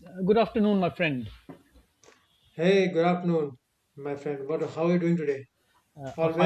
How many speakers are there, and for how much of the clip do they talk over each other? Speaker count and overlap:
2, about 5%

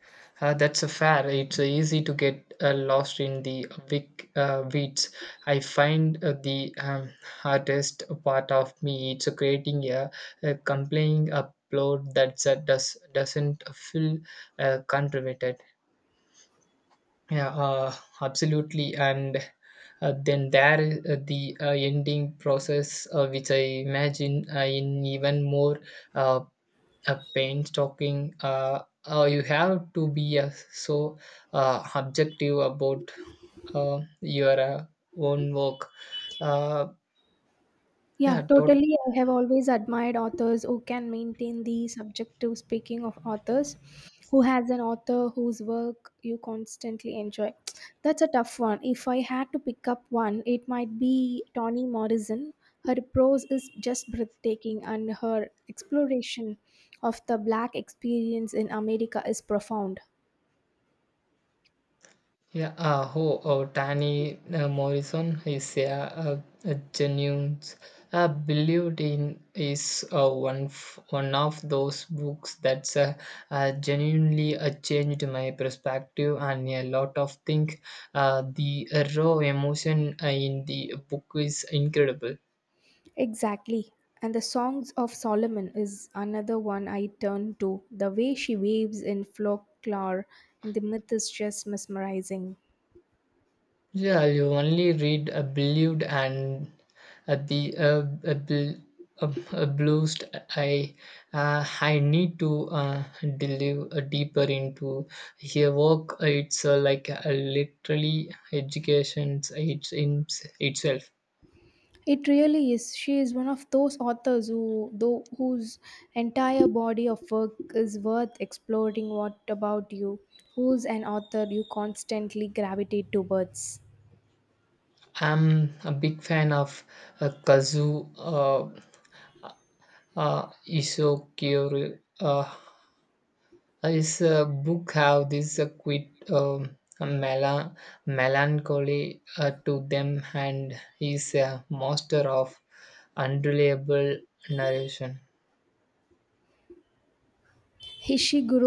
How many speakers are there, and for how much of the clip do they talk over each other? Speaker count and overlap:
2, under 1%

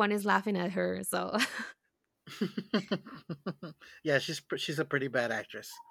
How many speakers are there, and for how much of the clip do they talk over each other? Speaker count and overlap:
2, no overlap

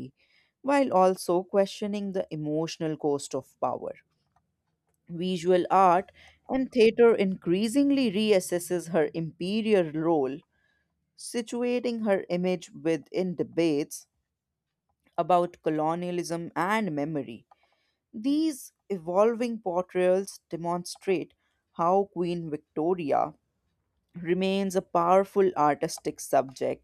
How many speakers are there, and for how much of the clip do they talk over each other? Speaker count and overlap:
1, no overlap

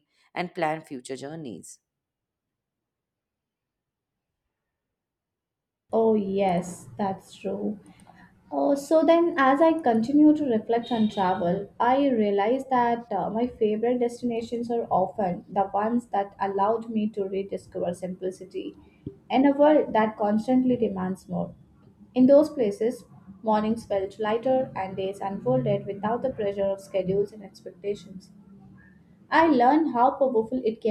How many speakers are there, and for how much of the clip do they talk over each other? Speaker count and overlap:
2, no overlap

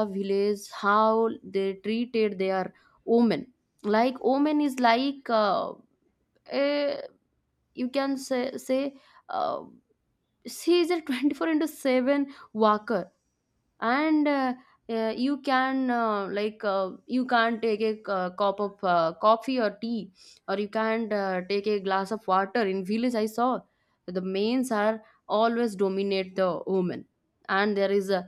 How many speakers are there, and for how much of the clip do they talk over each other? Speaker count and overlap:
1, no overlap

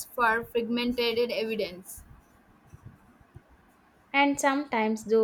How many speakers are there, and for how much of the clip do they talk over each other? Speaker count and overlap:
2, no overlap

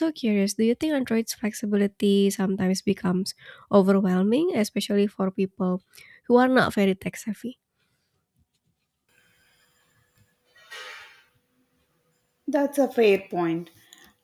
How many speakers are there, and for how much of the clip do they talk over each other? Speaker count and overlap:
2, no overlap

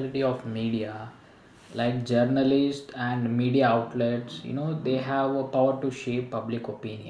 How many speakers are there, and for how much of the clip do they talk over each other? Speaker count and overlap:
1, no overlap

